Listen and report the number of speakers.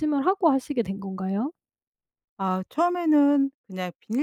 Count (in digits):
2